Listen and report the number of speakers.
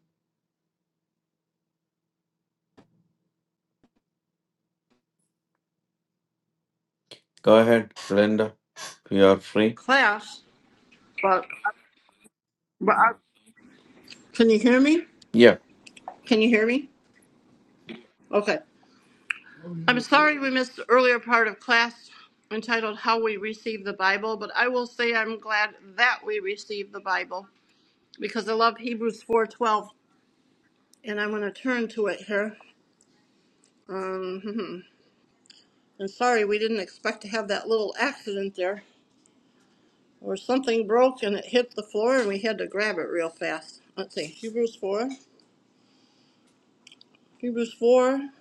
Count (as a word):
two